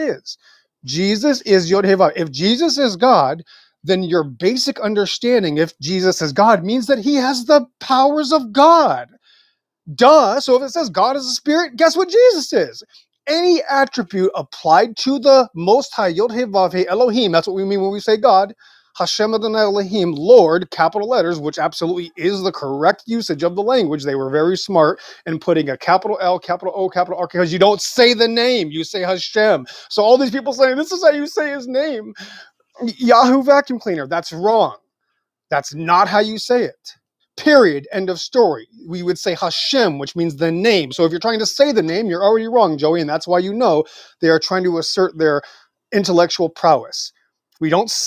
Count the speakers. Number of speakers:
one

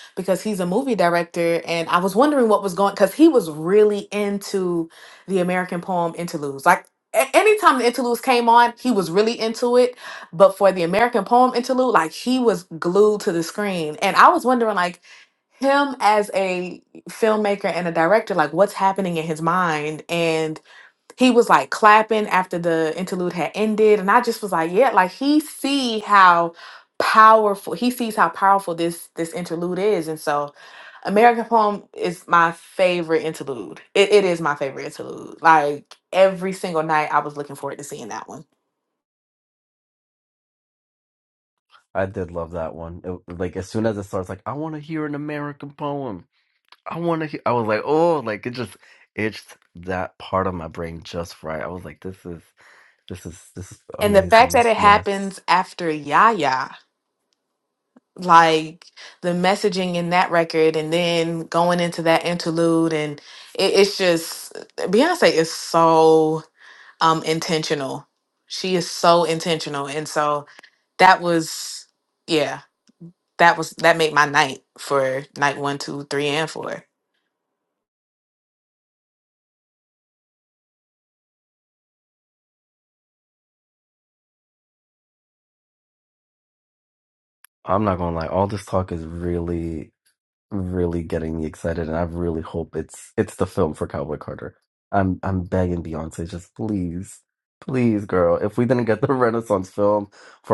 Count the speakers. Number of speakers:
two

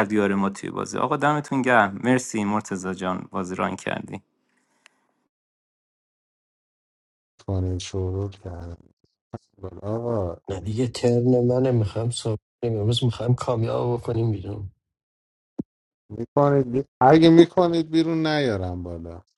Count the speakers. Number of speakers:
three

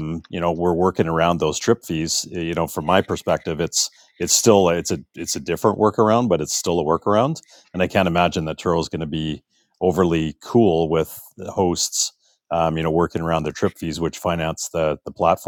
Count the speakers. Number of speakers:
one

